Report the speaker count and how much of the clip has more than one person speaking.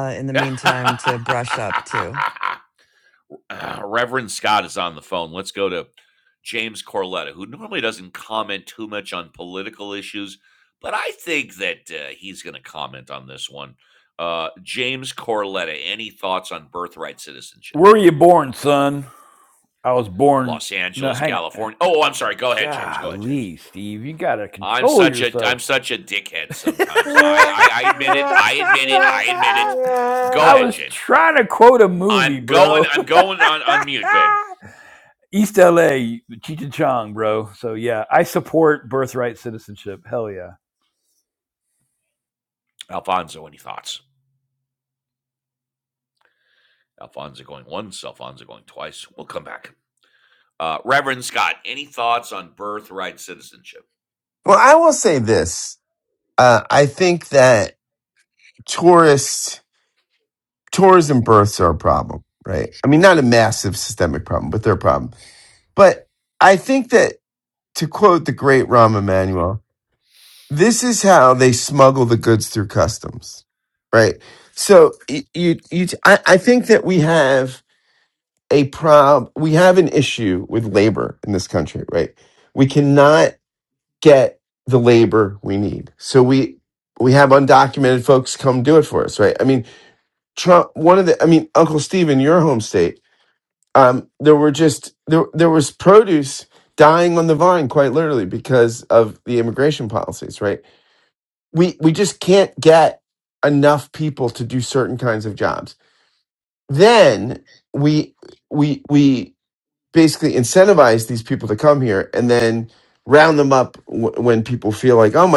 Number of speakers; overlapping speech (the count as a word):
four, about 4%